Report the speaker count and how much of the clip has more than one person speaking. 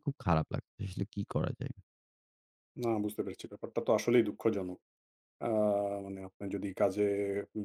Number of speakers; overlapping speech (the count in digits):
2, no overlap